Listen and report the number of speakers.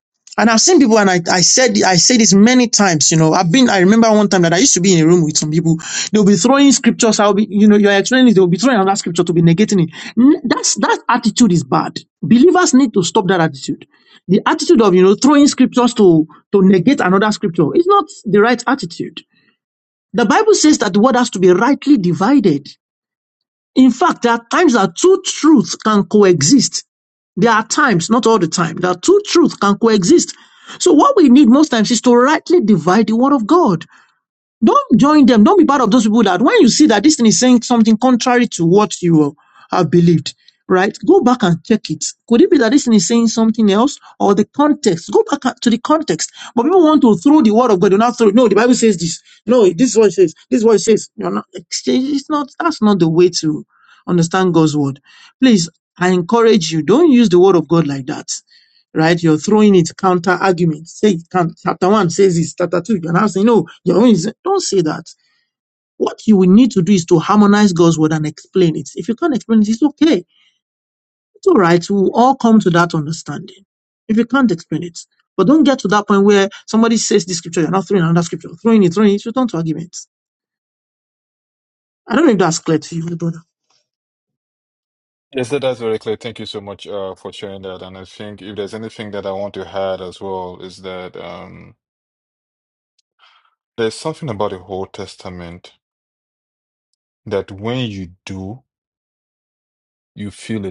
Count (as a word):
two